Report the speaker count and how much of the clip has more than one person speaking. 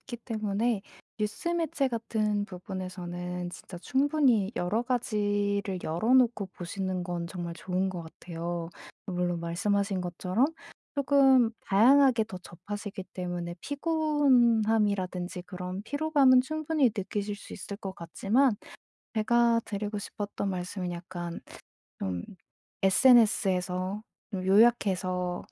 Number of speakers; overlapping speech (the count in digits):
1, no overlap